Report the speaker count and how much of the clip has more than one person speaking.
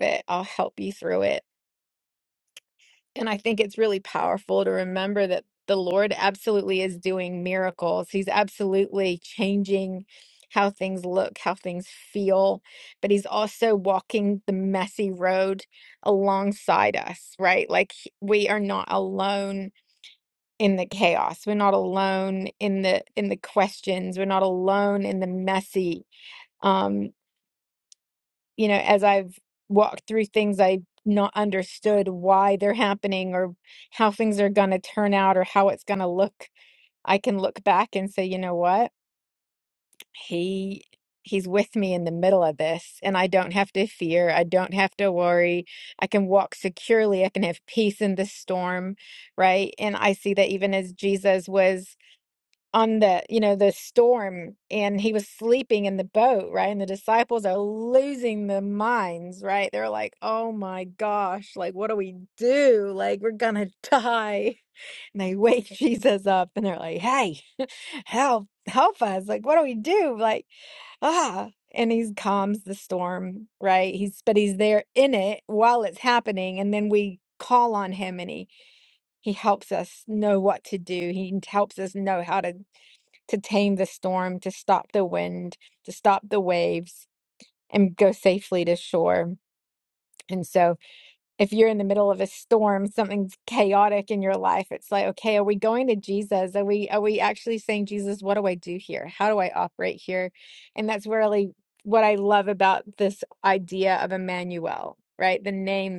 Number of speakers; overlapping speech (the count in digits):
1, no overlap